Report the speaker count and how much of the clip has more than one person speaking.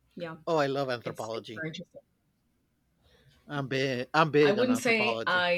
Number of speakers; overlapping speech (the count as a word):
two, about 27%